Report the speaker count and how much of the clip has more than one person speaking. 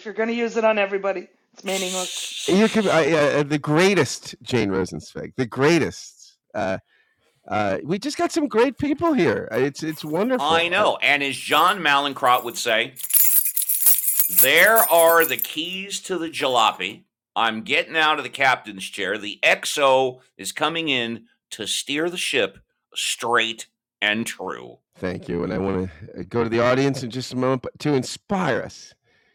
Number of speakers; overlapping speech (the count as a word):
three, about 2%